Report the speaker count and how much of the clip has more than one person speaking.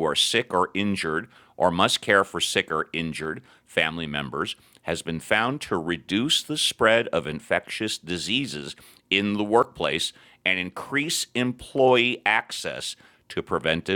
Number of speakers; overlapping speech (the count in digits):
1, no overlap